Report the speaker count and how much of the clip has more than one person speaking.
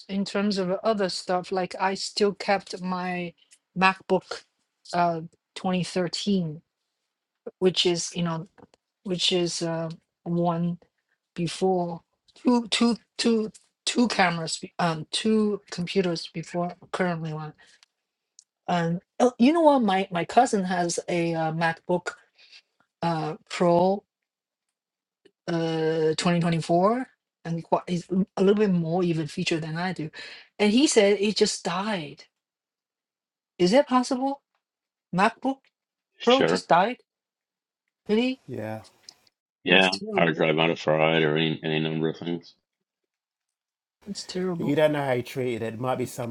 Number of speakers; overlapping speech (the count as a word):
three, about 3%